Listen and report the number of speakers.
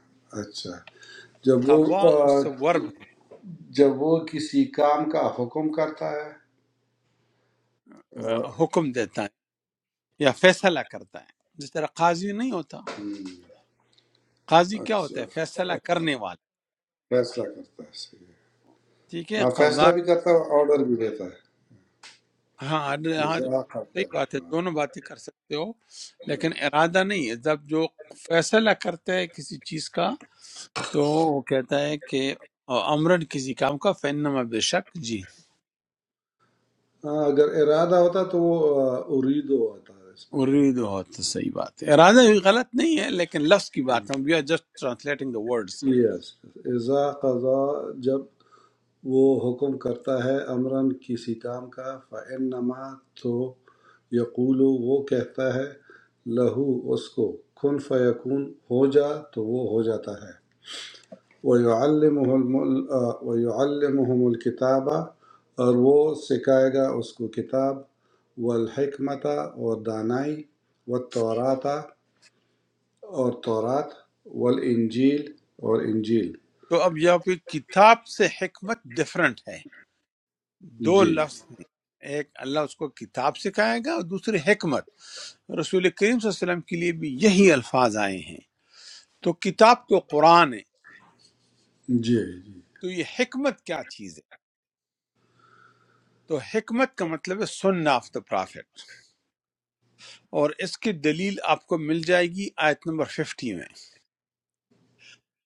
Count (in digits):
2